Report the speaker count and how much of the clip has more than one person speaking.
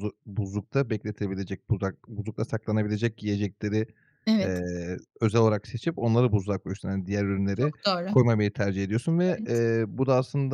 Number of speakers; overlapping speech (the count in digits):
2, about 7%